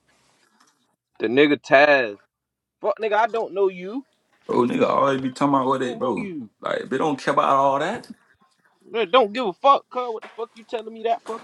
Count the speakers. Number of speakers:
two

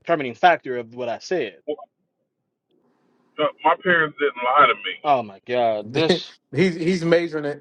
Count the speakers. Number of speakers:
three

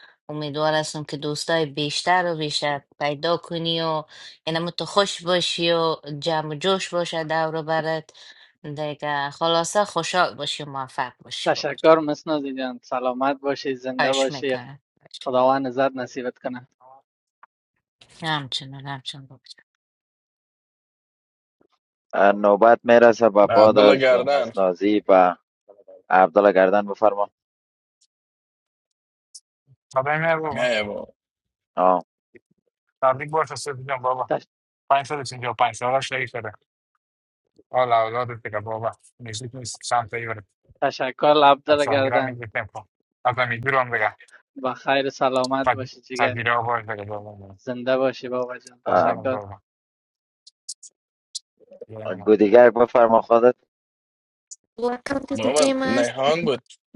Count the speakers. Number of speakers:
six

